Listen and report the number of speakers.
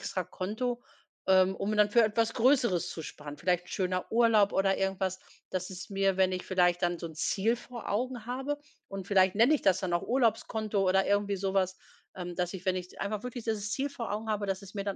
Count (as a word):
one